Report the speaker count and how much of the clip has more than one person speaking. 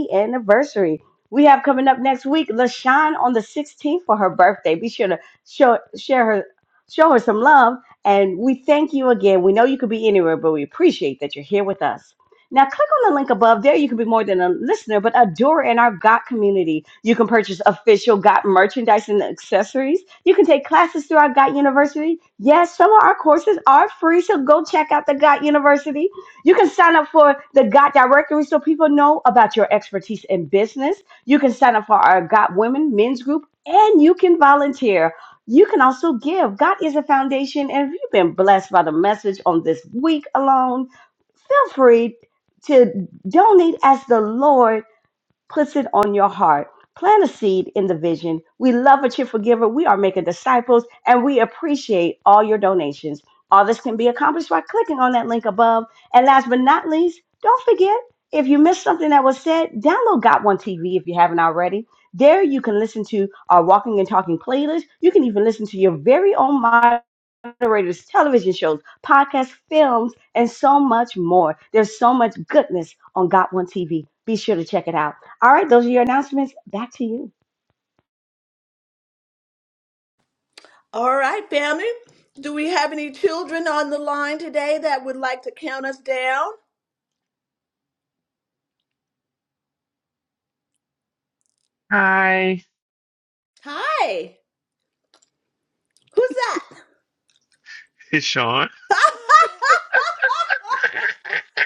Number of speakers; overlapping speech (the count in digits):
3, no overlap